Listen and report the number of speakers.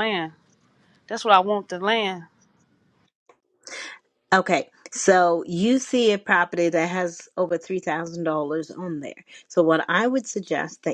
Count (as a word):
two